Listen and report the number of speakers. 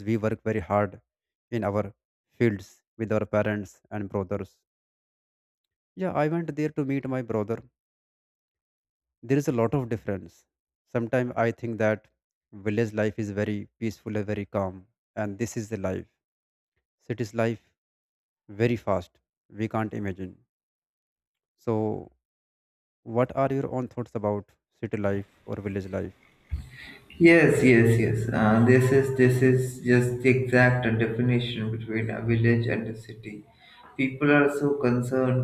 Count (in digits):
2